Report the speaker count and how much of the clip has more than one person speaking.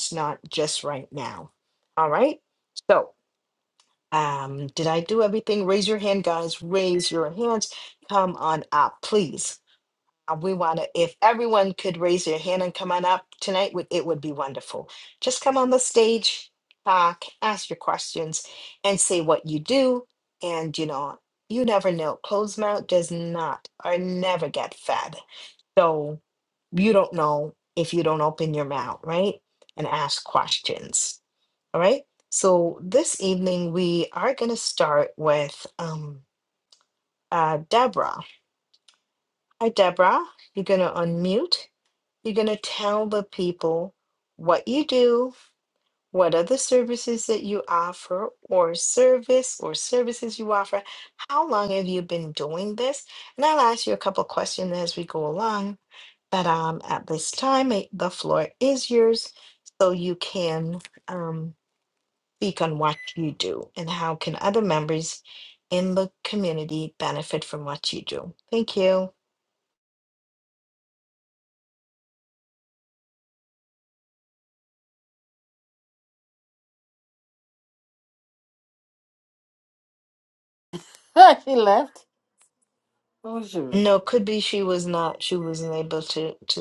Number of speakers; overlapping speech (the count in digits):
2, no overlap